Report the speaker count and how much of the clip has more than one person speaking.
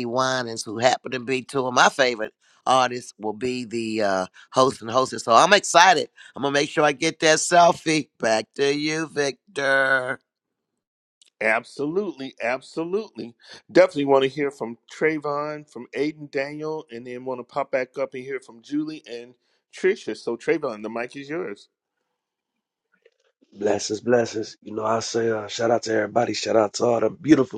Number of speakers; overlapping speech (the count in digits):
3, no overlap